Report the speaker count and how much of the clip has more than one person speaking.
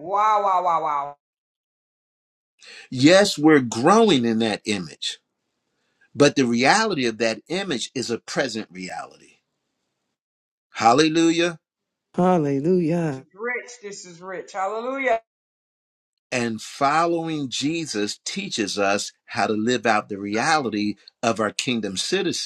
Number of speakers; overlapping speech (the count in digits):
3, under 1%